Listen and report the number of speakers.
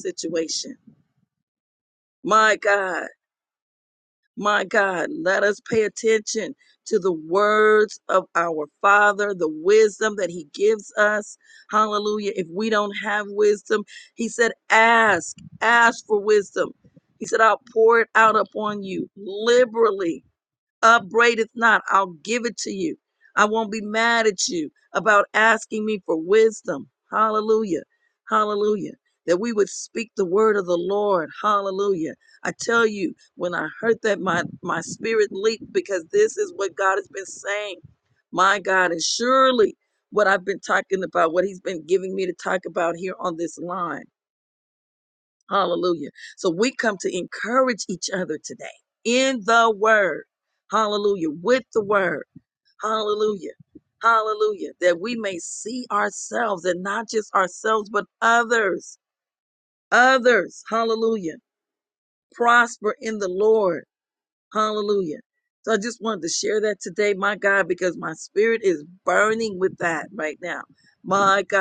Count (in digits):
1